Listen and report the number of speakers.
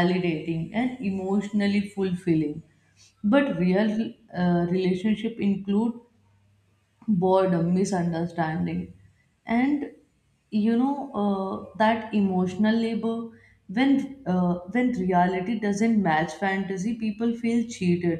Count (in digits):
1